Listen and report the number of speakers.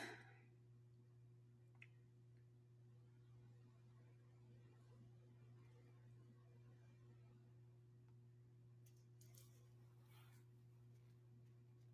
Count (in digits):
0